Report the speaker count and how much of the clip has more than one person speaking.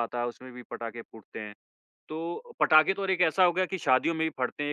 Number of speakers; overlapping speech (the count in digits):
1, no overlap